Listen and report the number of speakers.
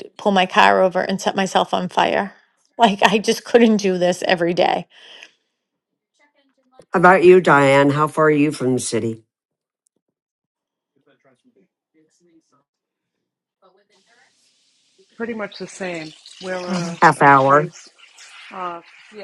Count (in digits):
3